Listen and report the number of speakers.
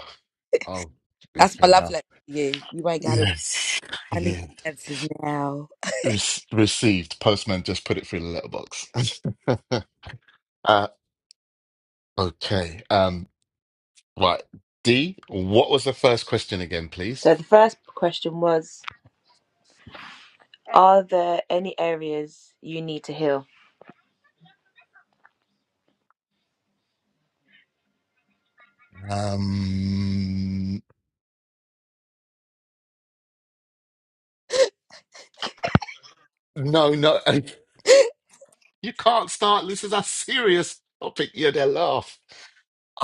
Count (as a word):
three